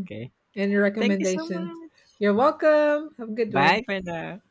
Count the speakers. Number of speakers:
2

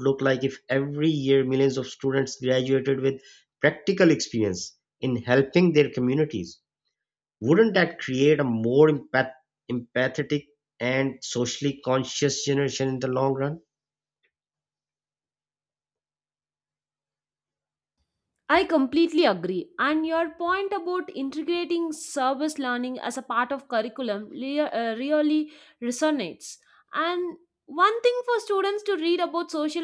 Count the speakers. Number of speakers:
2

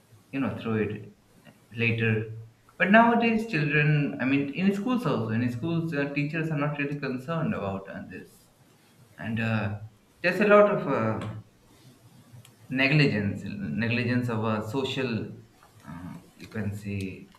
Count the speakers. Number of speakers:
1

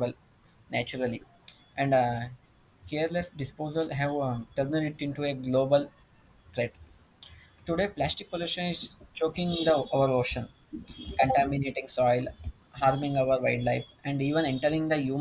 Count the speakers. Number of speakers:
1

